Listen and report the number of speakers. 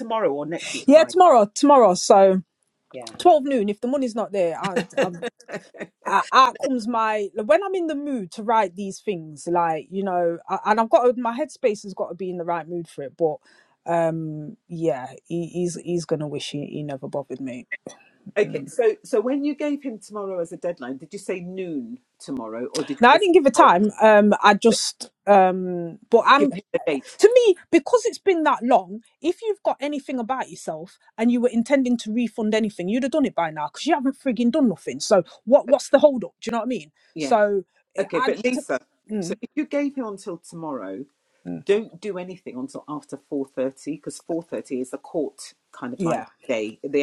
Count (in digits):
2